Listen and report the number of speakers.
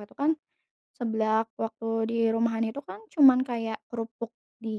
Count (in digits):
1